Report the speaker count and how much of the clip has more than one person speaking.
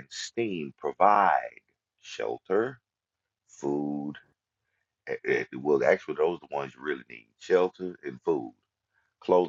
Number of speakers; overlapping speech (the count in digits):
1, no overlap